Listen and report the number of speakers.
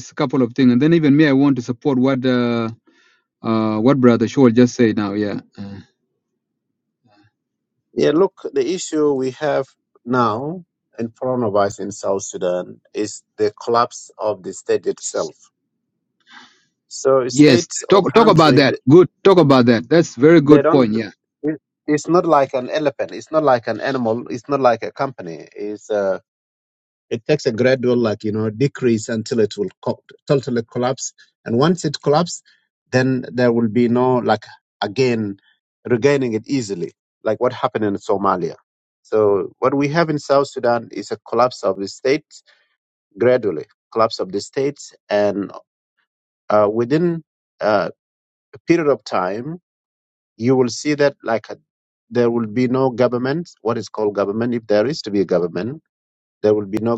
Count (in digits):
2